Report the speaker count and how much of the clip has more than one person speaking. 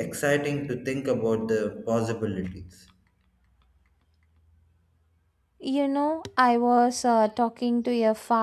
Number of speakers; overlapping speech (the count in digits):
2, no overlap